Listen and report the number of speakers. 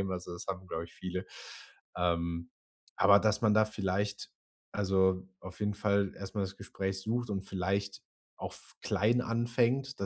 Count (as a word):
one